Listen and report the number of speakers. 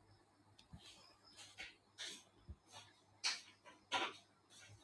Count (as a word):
zero